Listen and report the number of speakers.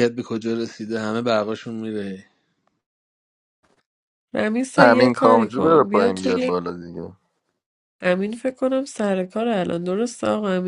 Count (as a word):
three